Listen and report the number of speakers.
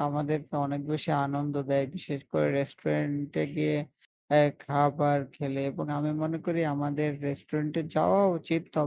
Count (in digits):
1